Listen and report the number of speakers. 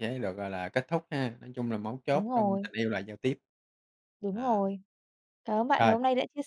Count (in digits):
2